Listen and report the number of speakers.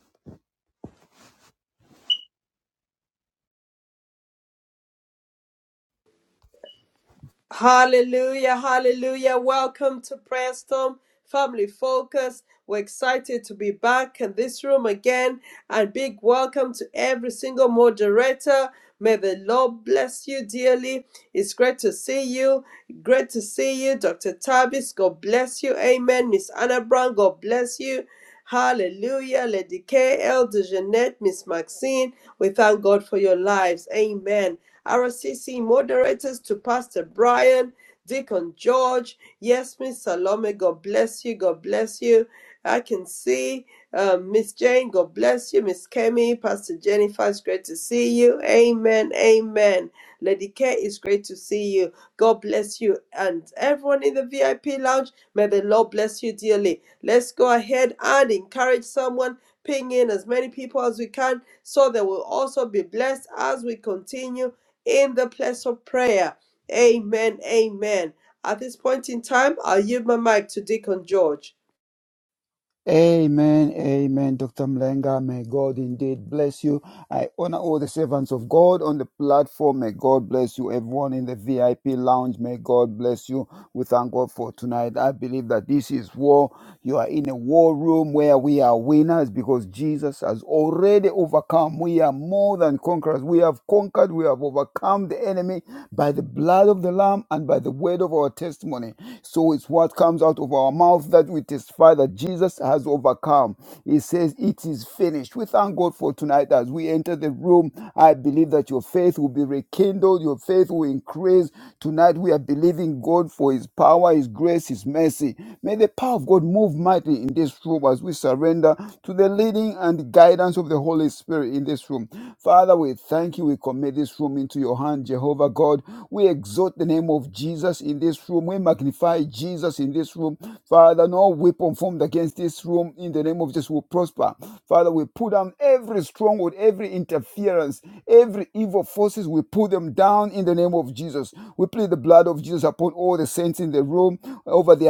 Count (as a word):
two